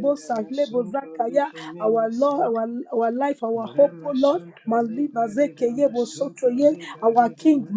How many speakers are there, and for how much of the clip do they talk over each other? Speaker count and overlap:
two, about 82%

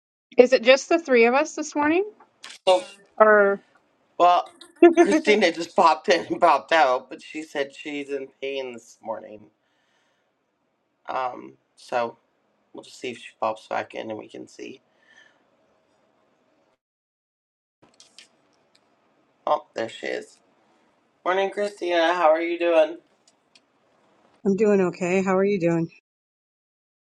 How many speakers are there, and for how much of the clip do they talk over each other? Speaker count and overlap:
three, no overlap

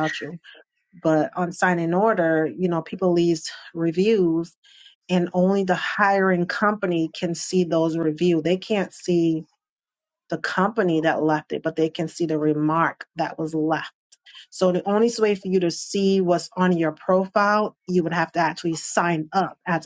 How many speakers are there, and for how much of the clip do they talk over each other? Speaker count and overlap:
one, no overlap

